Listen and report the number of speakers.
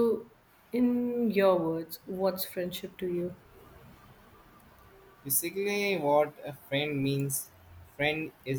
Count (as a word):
two